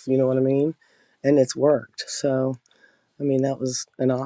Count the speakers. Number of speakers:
1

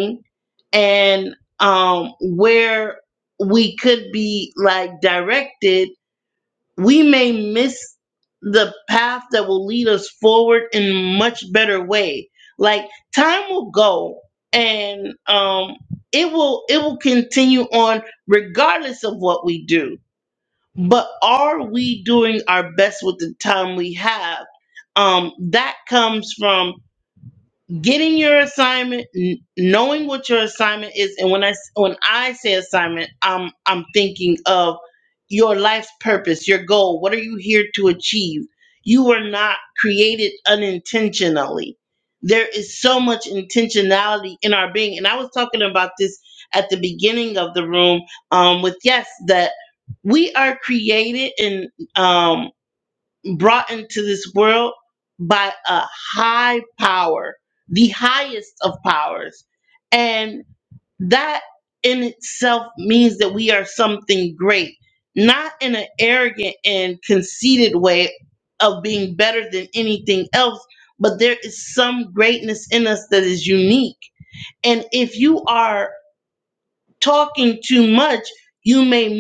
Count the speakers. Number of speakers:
1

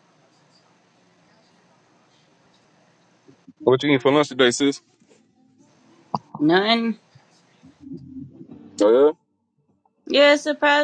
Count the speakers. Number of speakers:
2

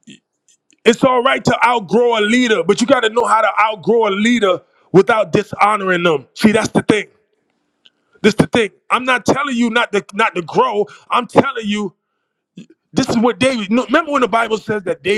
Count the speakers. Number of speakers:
1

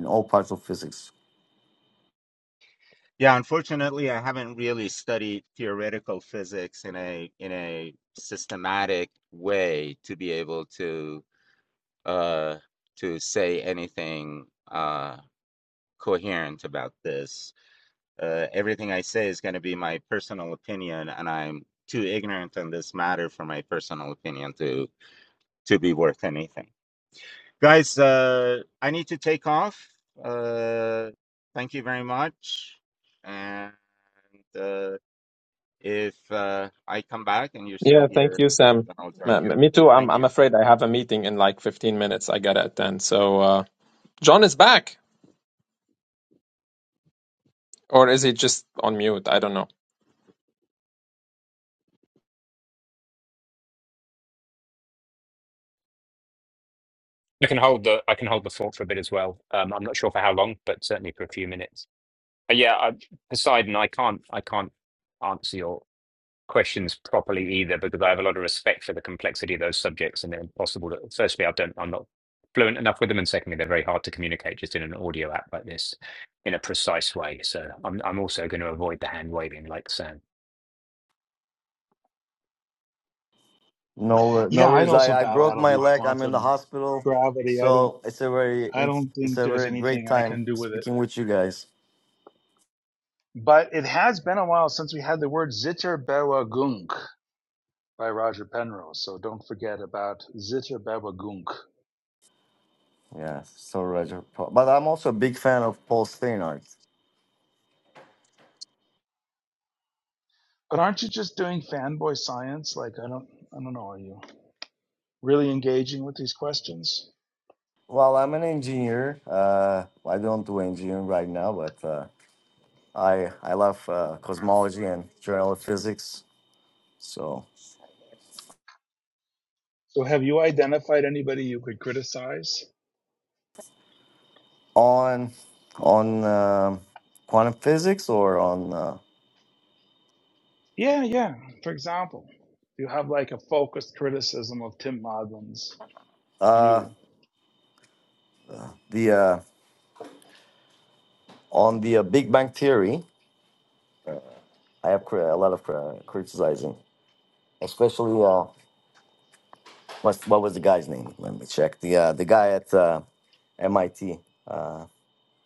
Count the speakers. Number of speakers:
5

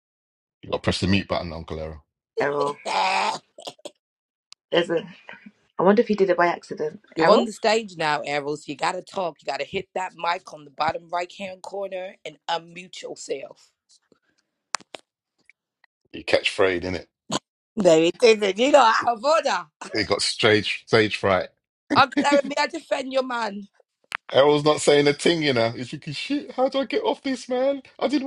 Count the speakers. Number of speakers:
3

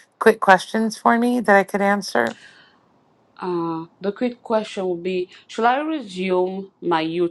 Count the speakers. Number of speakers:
2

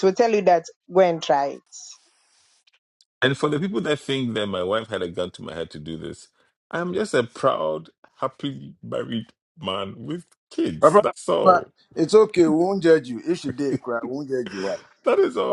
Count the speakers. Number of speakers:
3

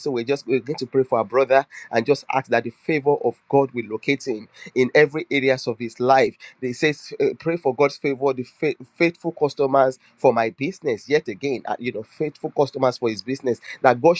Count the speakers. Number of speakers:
1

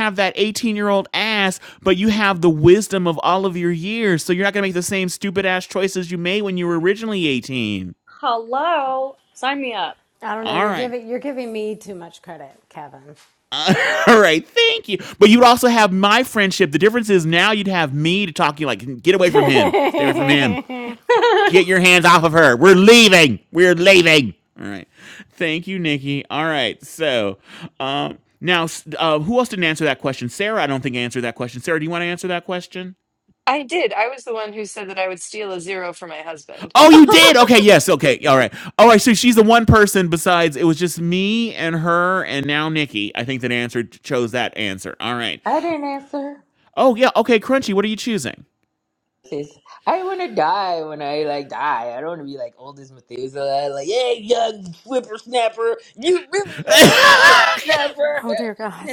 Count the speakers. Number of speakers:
5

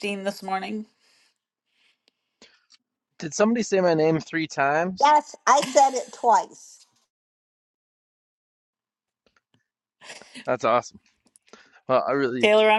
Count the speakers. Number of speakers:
3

